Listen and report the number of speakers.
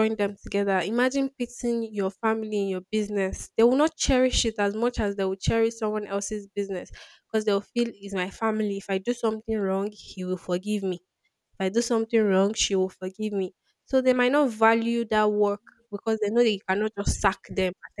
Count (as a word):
one